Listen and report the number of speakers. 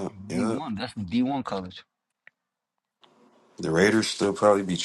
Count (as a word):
two